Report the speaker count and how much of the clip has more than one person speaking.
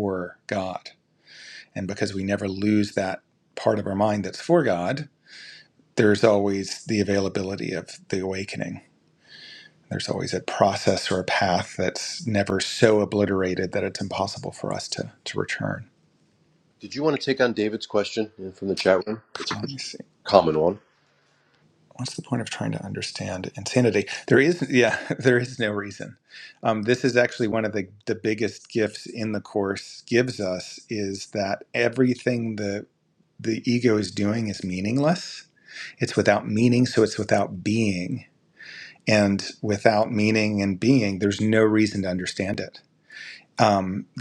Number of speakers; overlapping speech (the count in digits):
2, under 1%